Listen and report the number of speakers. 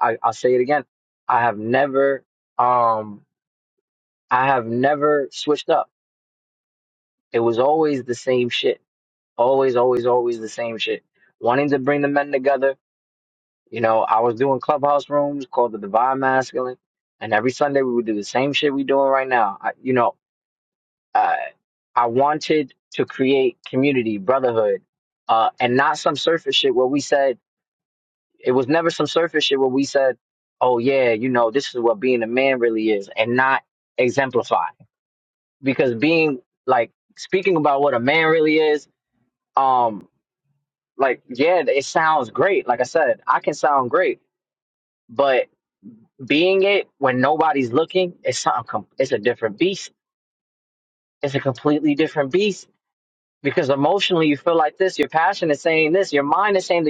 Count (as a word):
one